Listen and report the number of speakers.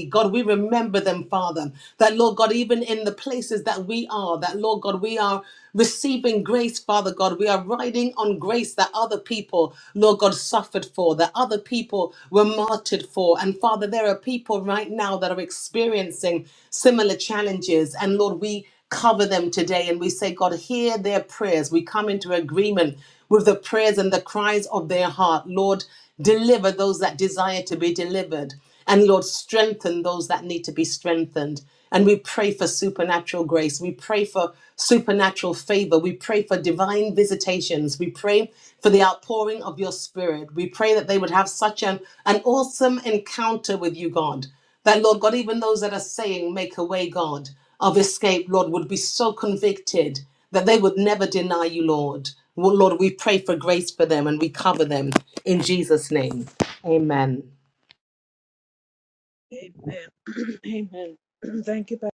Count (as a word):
two